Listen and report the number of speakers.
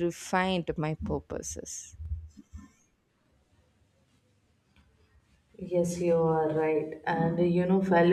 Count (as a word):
two